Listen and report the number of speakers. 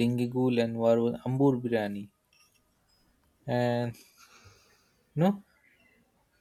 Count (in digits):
1